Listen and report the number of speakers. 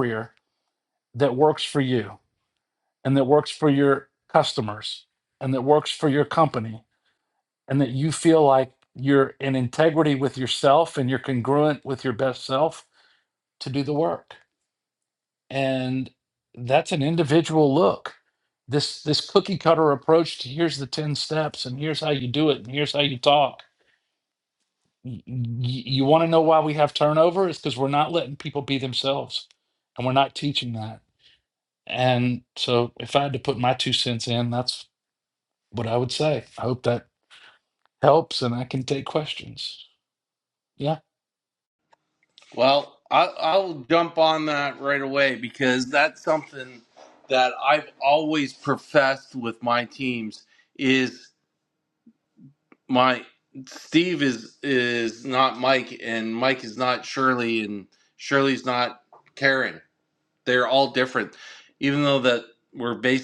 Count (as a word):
two